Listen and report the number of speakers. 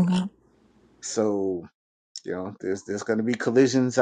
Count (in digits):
1